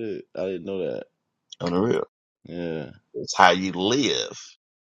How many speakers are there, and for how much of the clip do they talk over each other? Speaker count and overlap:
2, no overlap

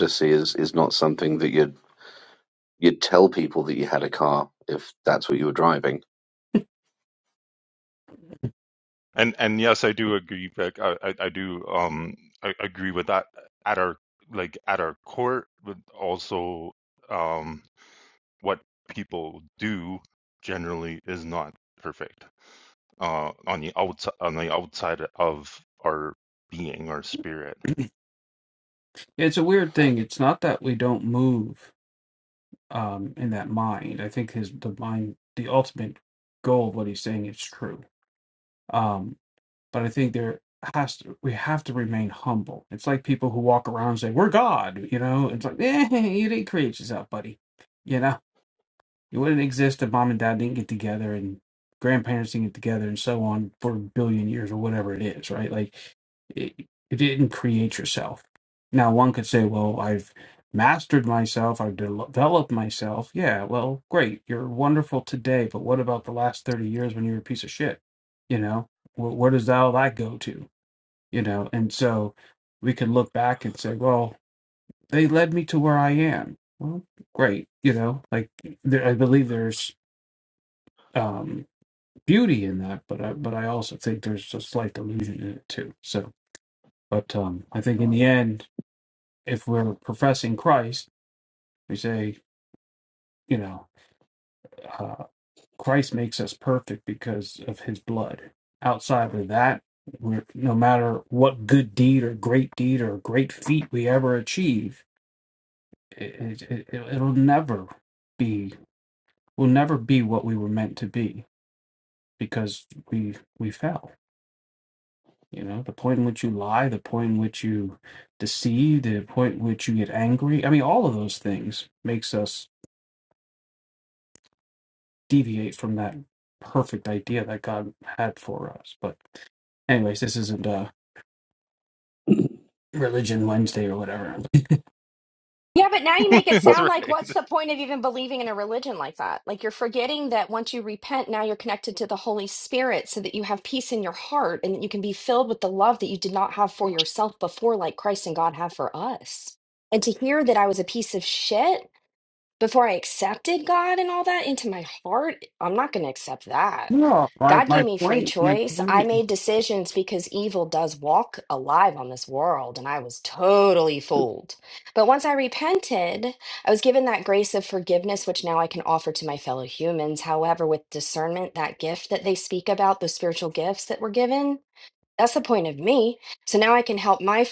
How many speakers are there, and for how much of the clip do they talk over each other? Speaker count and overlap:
4, about 1%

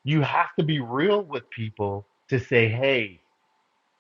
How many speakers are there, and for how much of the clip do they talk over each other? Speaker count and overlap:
1, no overlap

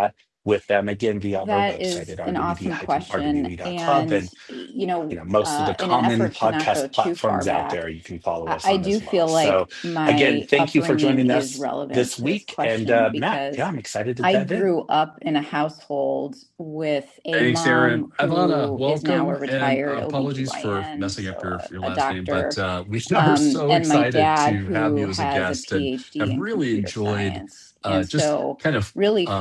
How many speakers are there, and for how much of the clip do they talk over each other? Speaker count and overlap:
3, about 68%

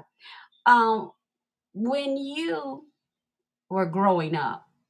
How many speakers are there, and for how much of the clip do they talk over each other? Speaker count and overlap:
1, no overlap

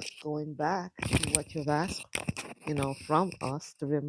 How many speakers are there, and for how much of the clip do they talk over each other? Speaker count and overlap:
1, no overlap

